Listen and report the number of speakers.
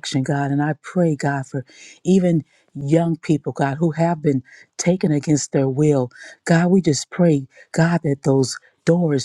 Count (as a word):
one